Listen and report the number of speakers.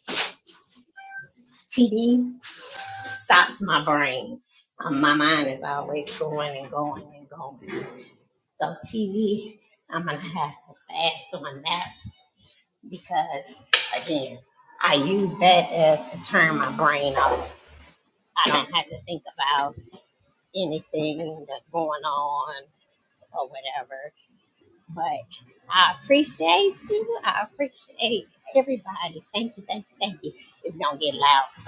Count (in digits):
1